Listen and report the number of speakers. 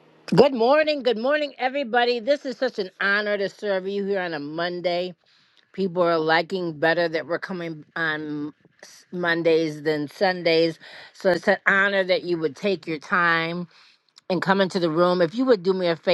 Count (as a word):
one